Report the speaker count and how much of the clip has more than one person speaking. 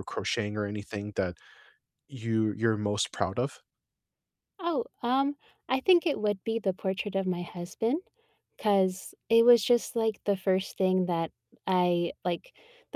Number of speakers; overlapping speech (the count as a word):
two, no overlap